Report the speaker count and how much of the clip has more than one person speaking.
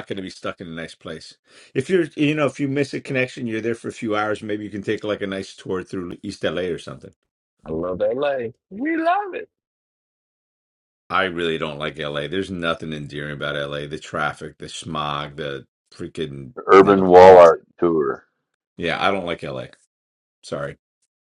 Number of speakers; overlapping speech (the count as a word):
three, about 4%